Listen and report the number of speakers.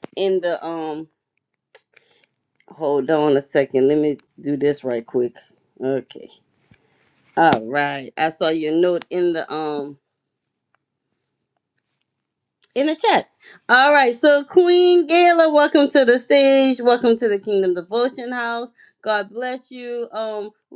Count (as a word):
one